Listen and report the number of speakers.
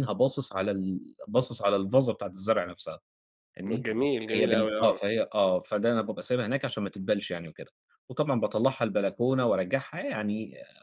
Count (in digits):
2